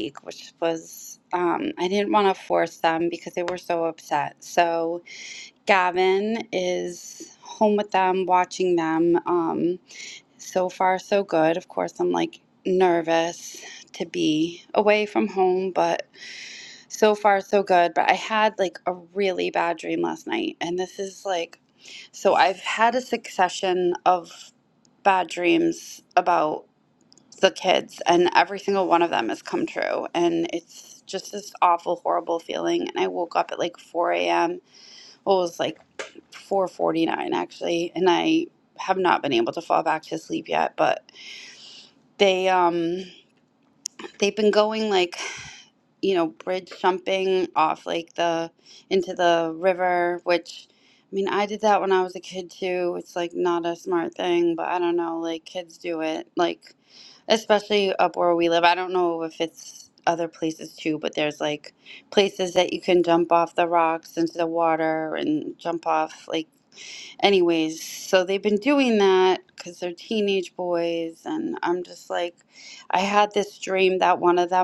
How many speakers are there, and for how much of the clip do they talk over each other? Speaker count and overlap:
1, no overlap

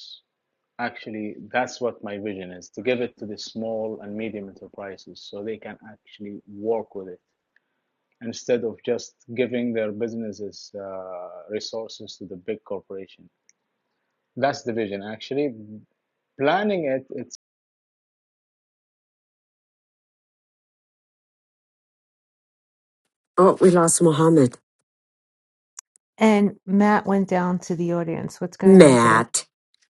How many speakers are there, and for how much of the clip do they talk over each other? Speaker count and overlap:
3, about 2%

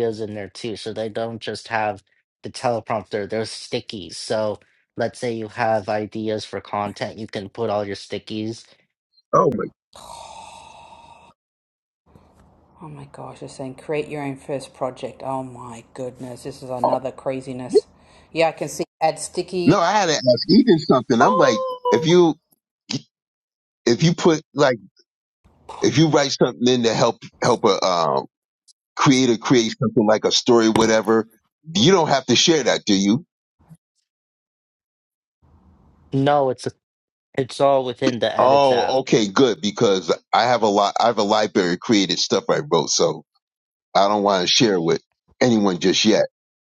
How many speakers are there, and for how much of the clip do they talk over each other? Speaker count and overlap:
3, about 3%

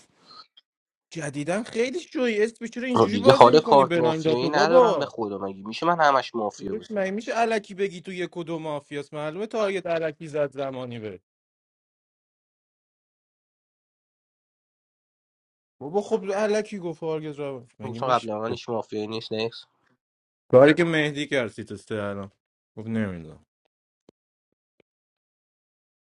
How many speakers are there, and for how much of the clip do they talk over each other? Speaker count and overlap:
2, about 11%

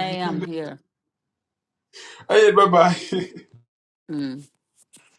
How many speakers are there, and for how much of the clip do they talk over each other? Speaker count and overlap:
2, about 3%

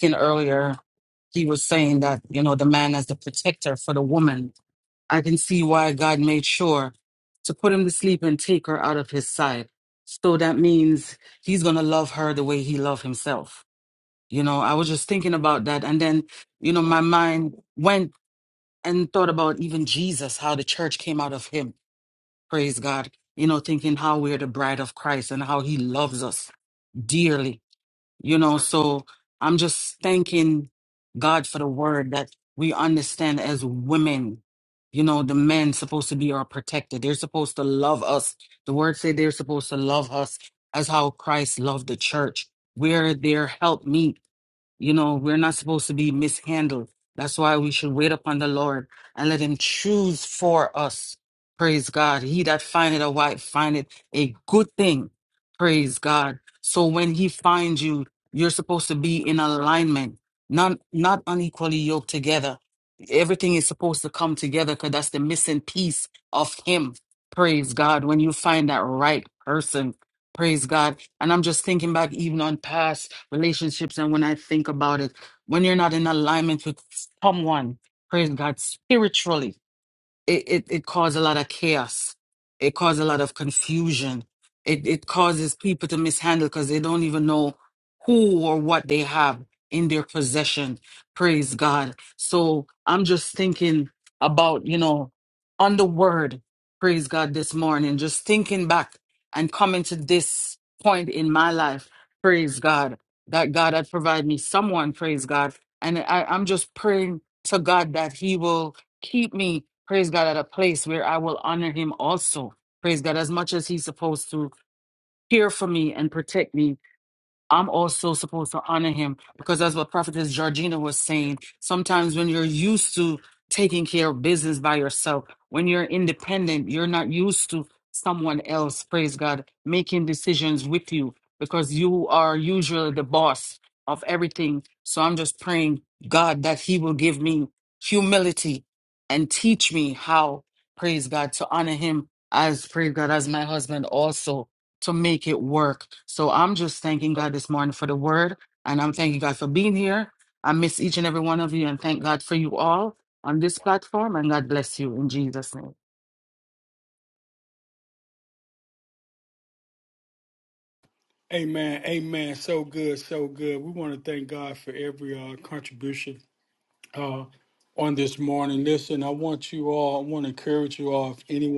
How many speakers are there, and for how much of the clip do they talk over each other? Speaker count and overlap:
2, no overlap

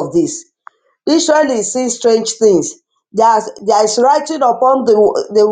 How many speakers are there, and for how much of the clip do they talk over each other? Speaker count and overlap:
1, no overlap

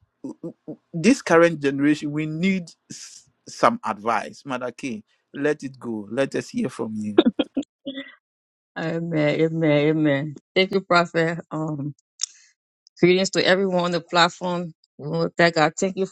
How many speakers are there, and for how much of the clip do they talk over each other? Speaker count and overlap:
2, no overlap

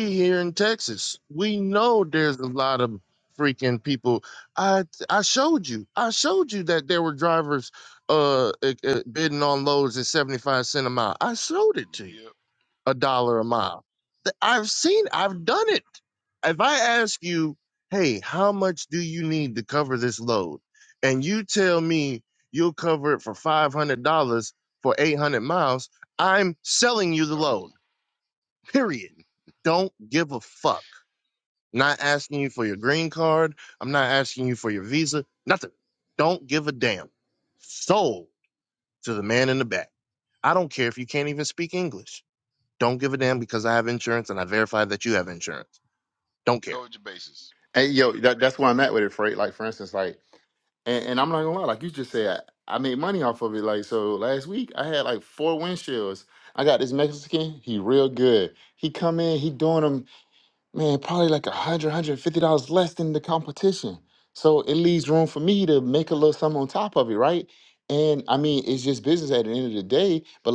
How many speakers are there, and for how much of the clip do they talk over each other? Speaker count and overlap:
3, about 1%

